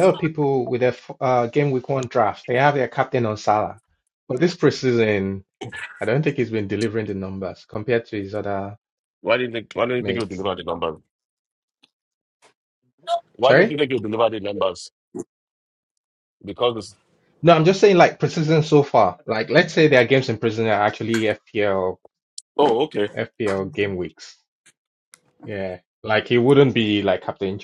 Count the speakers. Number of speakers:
2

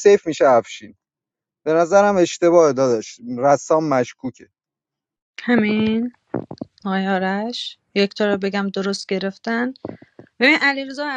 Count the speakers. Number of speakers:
2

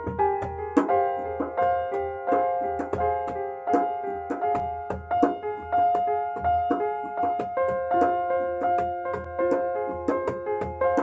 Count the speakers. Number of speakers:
0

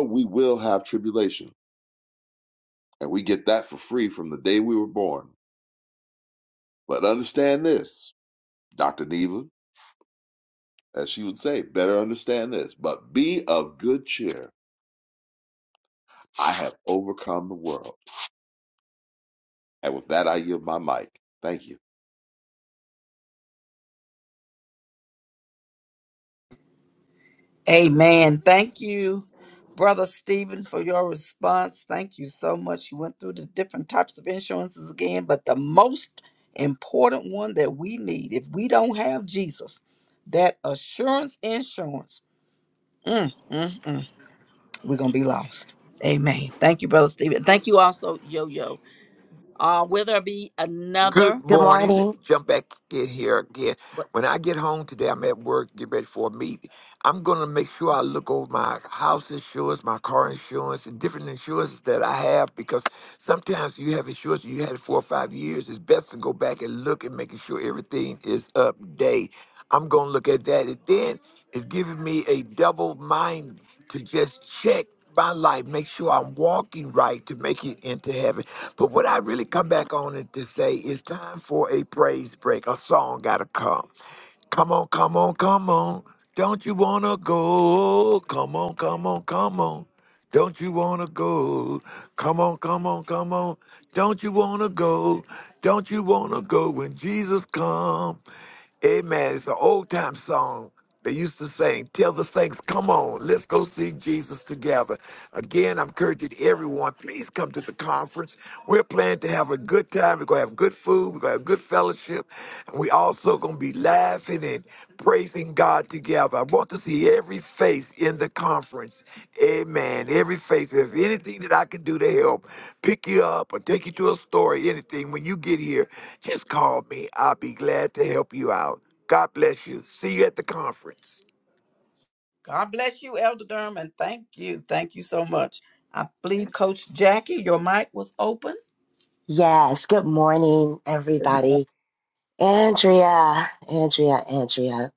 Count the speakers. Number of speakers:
4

